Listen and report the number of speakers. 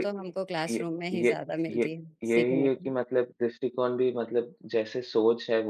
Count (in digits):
2